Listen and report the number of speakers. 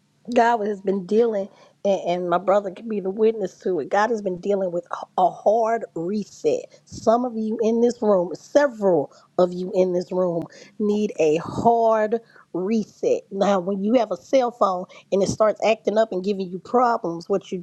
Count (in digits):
1